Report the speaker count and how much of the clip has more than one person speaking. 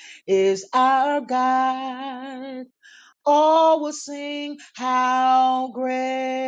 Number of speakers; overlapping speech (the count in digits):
1, no overlap